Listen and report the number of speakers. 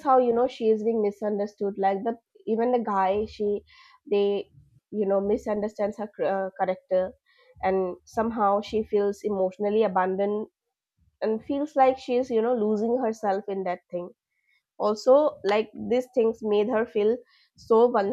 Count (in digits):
1